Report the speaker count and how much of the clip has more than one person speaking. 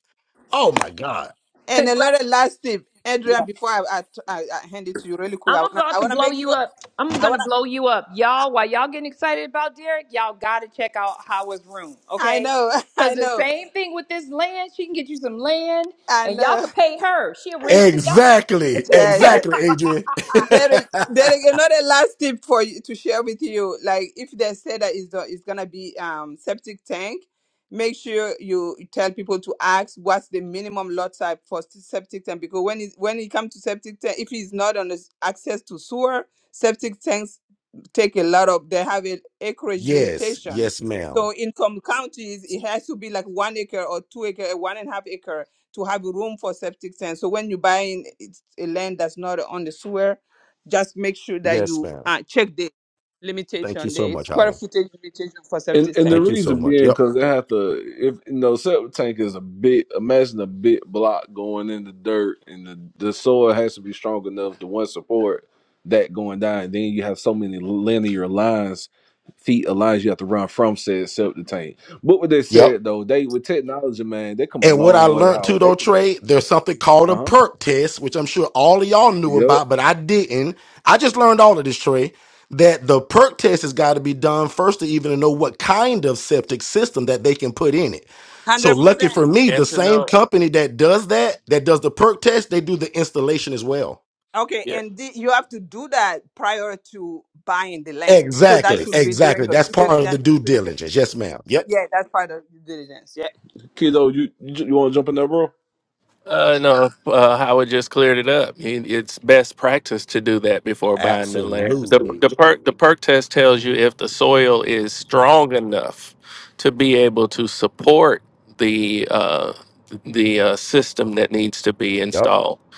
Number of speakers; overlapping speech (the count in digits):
5, about 12%